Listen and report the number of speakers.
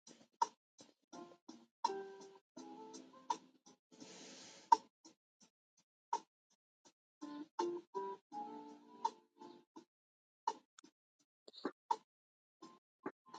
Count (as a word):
zero